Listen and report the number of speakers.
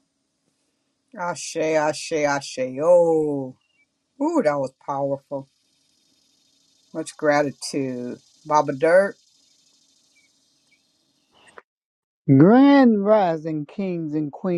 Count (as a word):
two